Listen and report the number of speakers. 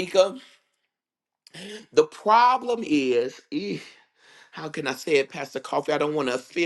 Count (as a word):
one